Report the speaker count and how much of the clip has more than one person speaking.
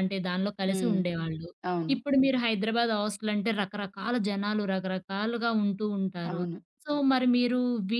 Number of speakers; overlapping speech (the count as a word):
two, about 8%